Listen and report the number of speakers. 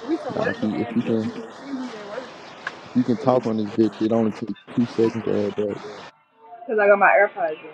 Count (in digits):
3